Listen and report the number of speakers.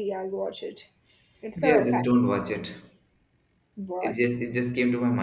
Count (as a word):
two